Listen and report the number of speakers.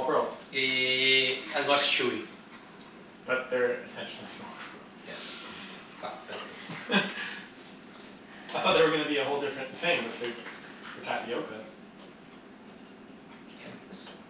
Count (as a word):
two